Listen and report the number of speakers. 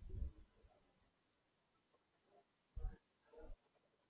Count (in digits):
0